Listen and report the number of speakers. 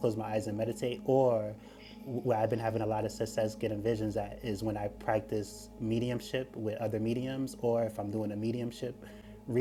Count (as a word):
one